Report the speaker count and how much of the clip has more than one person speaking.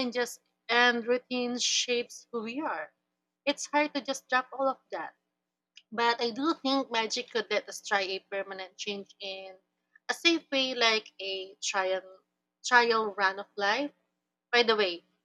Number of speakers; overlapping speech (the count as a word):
one, no overlap